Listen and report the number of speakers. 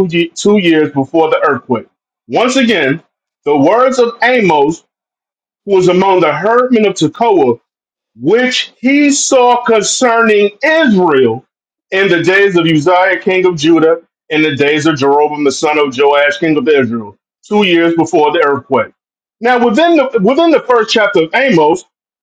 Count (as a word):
one